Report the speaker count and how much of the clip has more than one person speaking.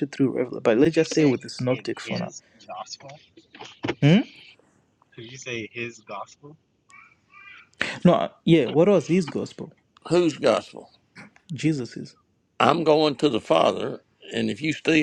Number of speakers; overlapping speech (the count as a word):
three, about 7%